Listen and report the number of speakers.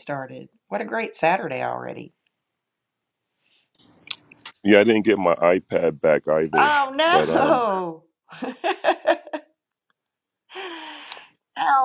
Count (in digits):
2